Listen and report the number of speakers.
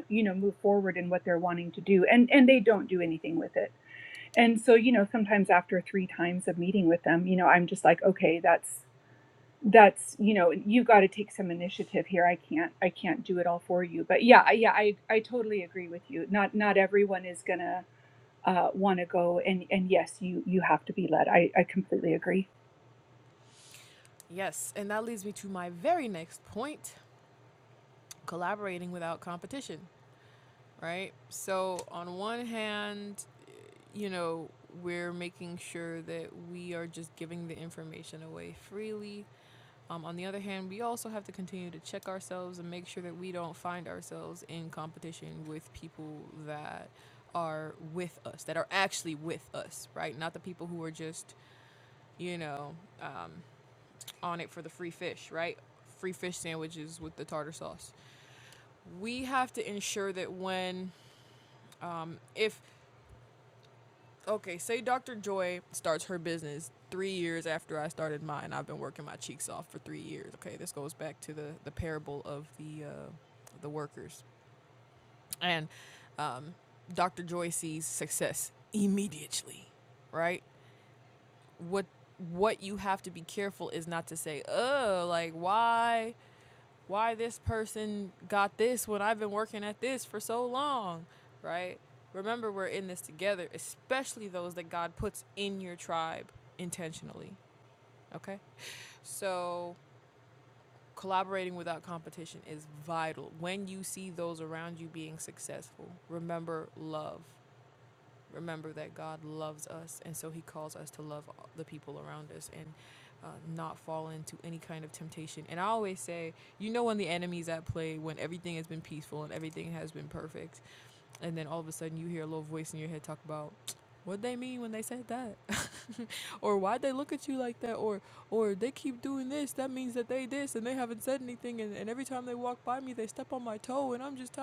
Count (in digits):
2